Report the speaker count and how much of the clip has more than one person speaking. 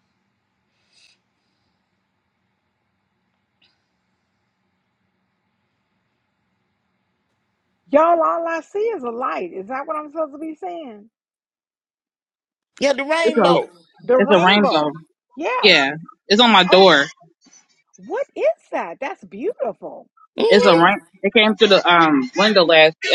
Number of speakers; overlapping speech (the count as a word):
three, about 8%